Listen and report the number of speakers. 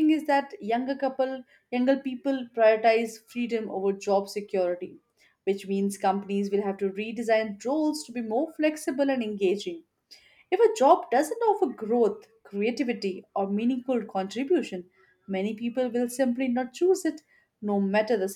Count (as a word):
one